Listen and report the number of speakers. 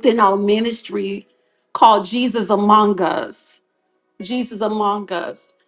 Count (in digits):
1